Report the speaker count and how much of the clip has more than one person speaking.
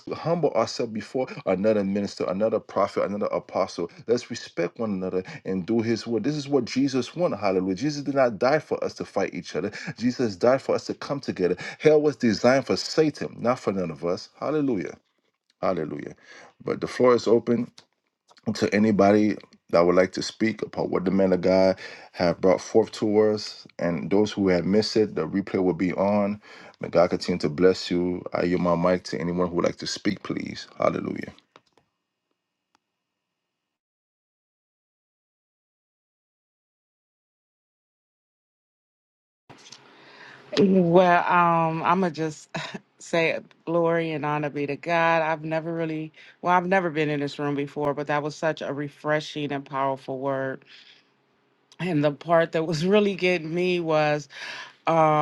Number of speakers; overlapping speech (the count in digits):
2, no overlap